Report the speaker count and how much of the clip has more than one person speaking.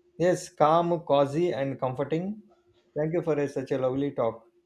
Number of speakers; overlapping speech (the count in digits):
1, no overlap